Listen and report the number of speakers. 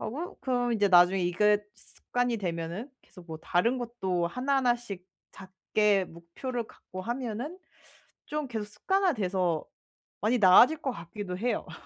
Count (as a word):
one